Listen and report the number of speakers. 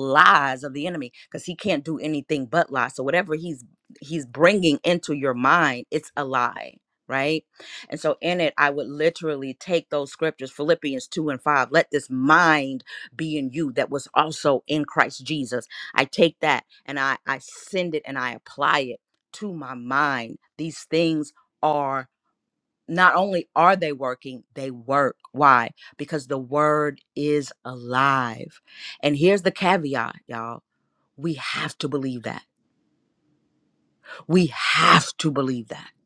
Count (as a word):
one